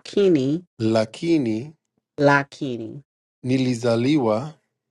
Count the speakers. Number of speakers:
two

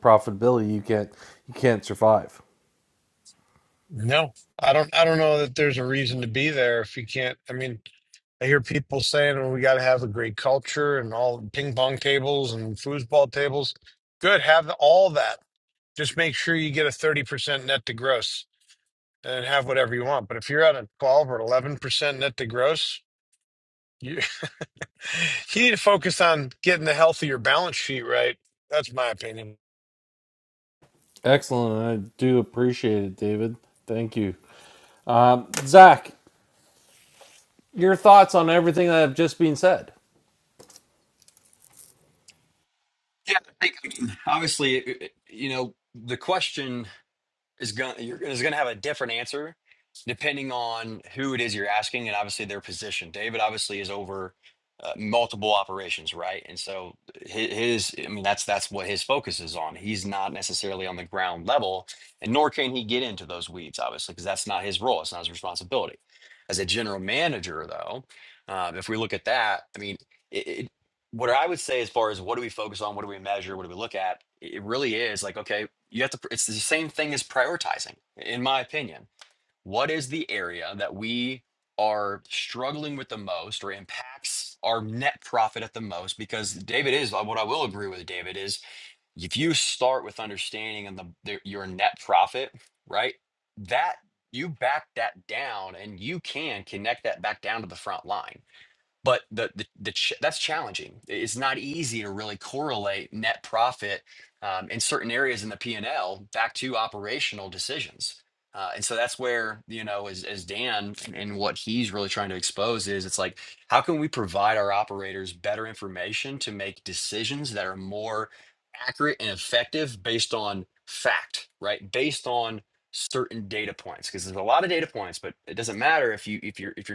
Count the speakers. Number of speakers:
three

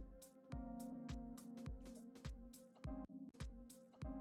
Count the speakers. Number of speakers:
zero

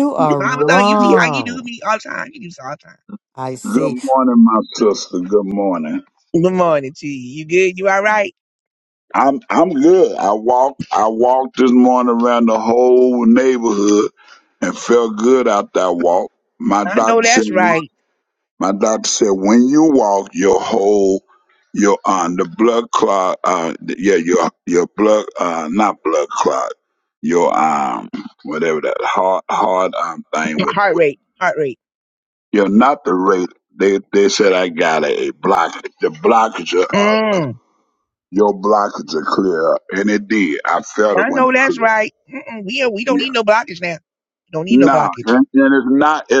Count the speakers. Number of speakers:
three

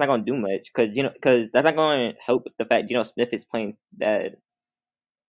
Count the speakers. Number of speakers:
one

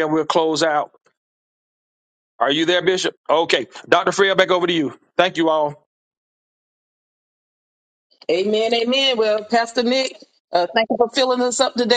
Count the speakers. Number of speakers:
two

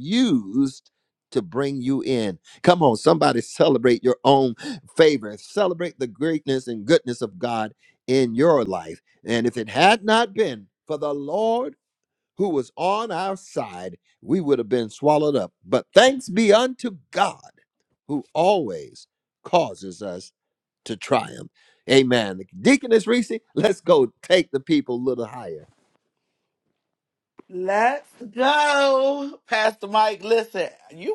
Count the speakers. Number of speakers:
two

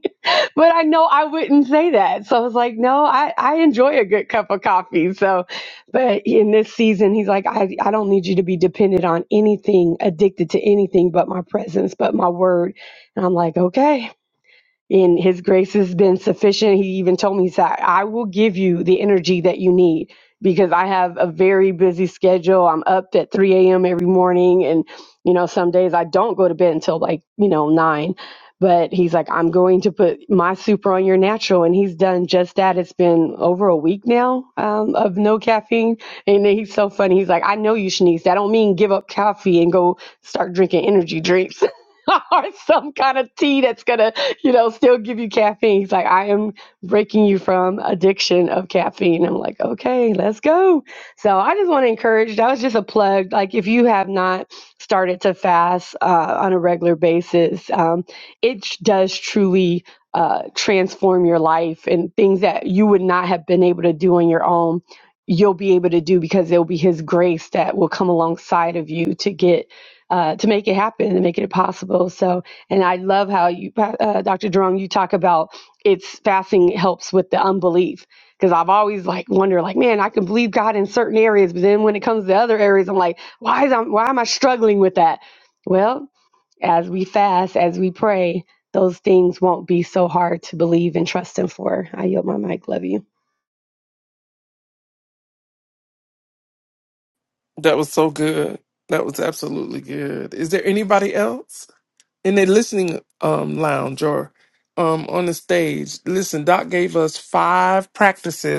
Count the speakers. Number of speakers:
two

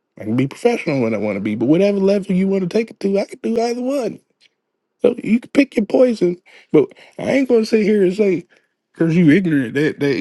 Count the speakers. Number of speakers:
one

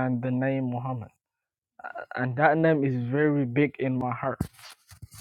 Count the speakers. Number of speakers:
one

